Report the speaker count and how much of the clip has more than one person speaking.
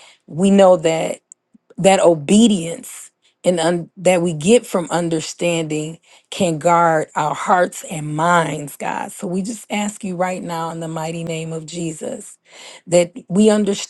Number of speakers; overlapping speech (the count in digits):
1, no overlap